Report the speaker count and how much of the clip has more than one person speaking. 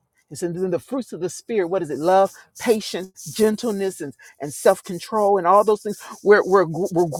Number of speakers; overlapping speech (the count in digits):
1, no overlap